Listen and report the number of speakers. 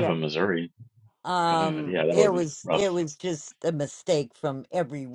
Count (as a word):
two